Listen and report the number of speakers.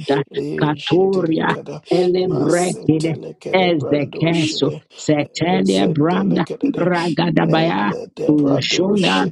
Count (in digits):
2